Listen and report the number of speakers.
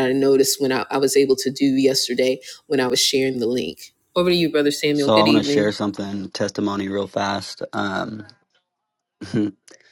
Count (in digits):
2